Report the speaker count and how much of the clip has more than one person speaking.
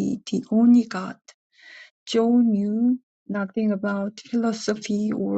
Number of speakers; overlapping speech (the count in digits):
1, no overlap